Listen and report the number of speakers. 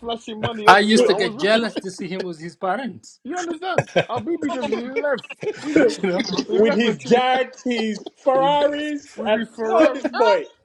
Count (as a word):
three